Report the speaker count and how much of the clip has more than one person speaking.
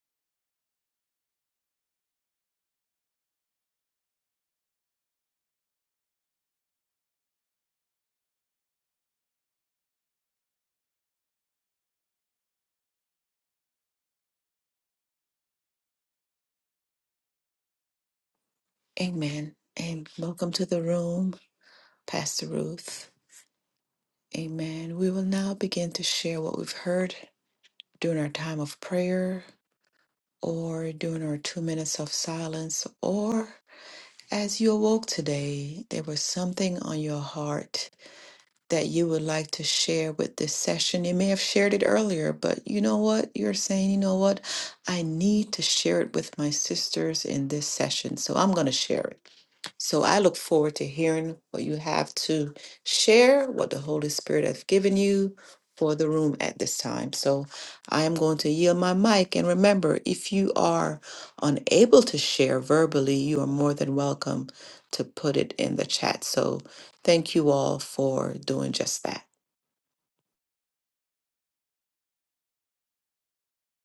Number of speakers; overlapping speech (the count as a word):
one, no overlap